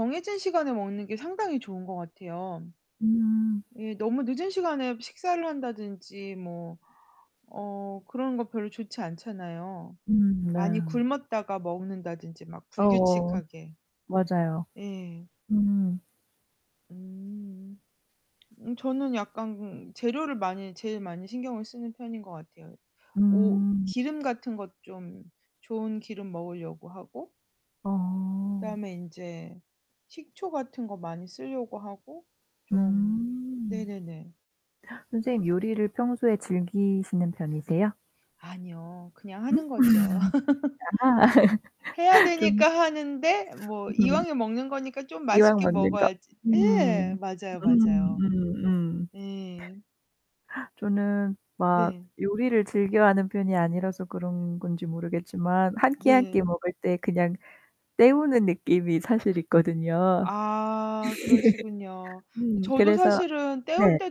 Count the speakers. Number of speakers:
two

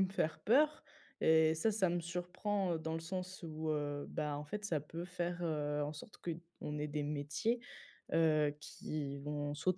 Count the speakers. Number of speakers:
one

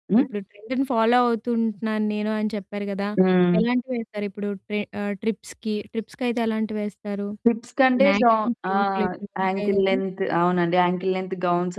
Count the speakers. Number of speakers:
two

